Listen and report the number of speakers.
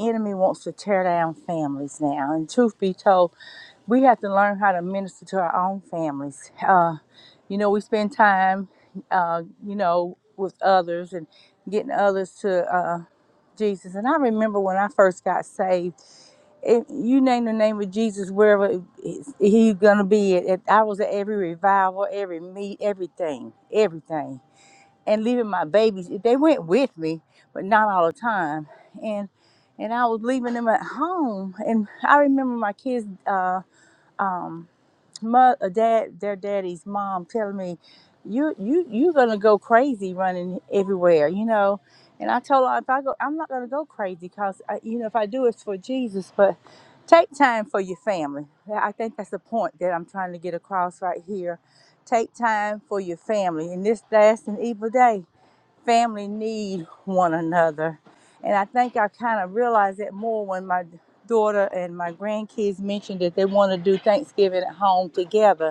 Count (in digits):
1